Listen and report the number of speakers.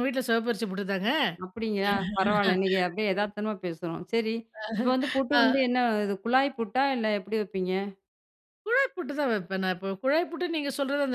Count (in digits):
2